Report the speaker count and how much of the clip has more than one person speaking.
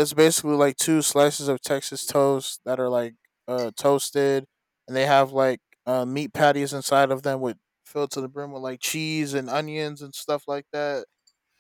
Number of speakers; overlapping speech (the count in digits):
1, no overlap